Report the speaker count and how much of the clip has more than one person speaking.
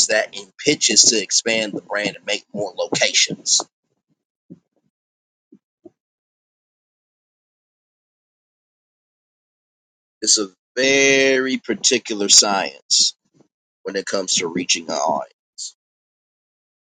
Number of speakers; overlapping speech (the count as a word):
one, no overlap